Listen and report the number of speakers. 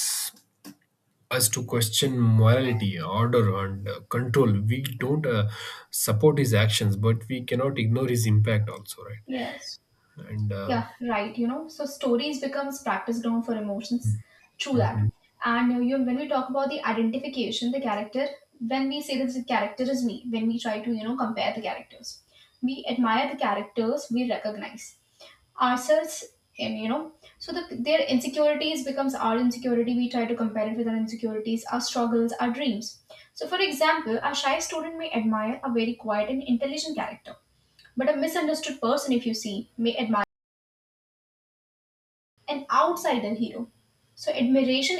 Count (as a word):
two